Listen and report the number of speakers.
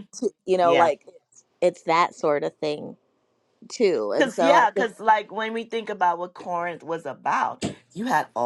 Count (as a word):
two